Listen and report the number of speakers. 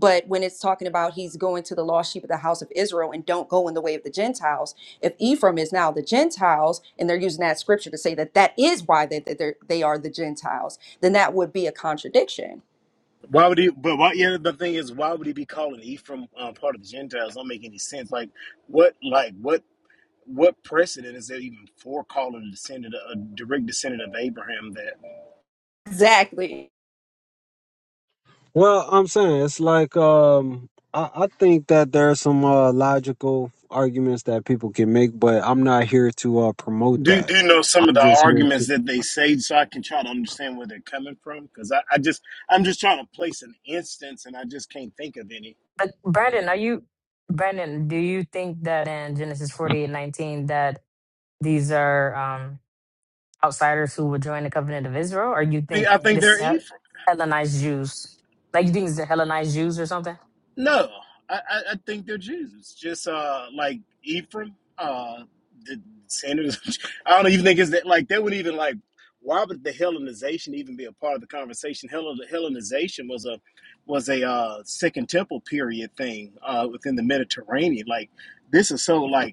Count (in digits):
4